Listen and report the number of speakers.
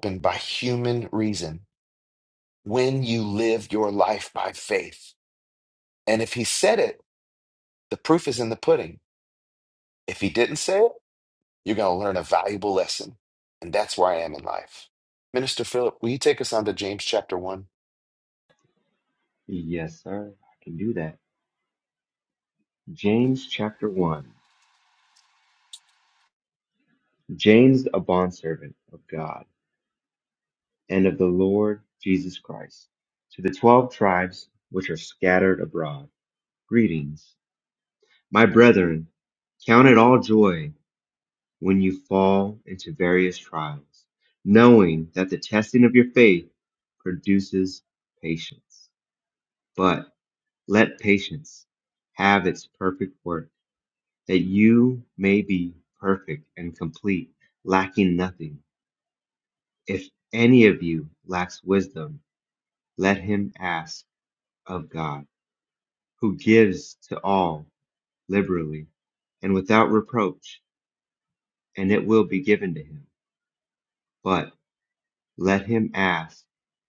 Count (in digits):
2